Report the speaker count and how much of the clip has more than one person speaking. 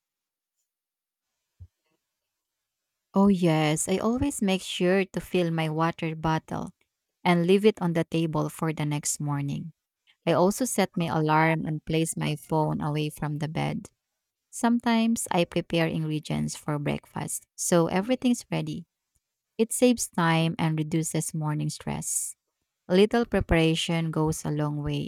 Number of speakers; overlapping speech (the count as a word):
one, no overlap